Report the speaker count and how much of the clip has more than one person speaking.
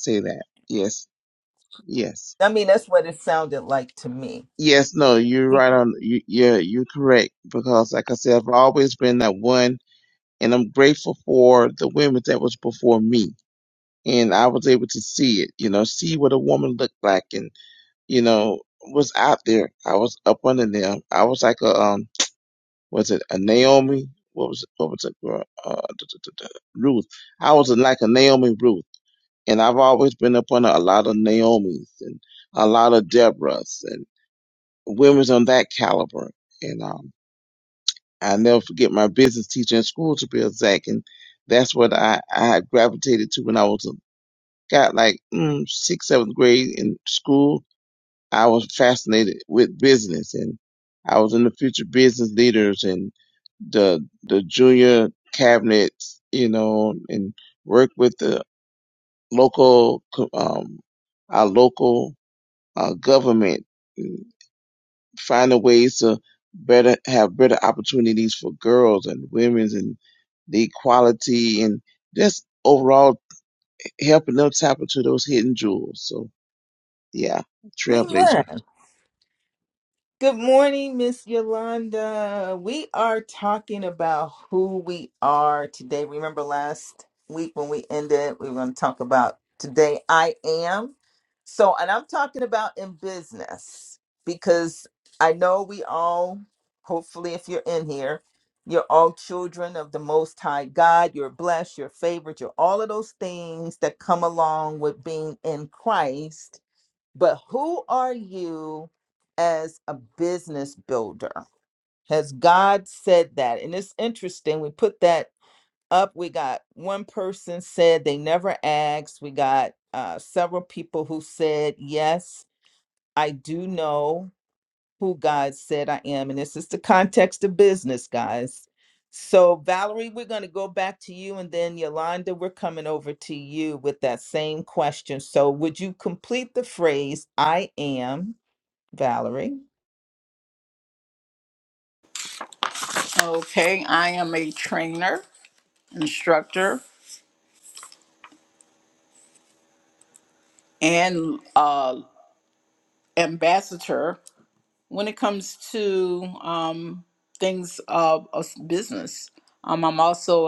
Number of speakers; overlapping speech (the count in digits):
3, under 1%